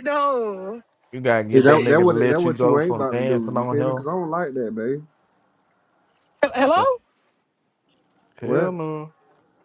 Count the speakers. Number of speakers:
three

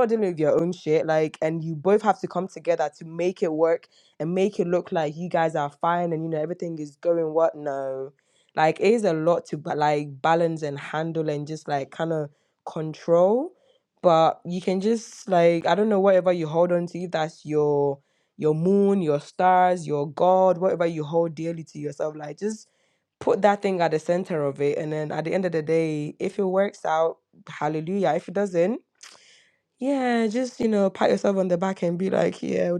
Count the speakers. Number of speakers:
one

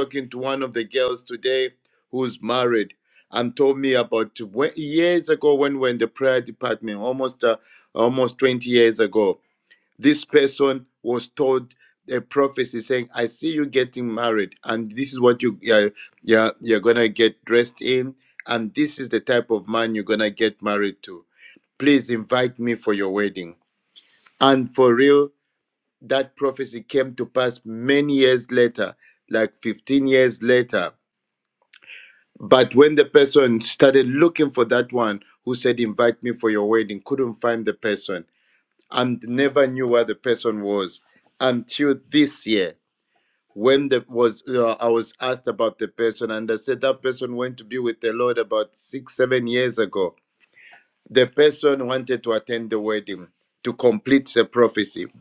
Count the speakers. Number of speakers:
one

